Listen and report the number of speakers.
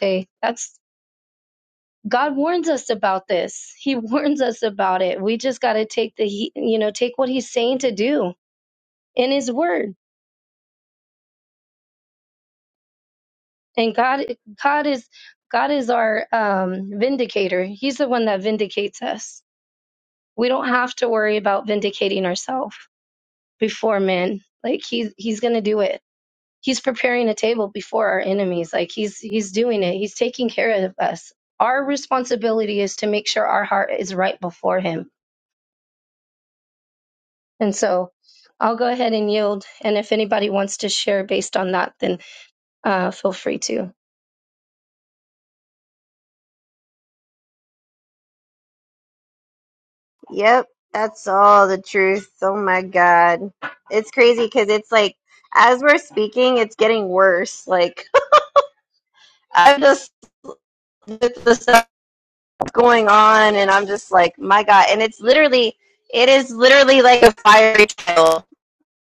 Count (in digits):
2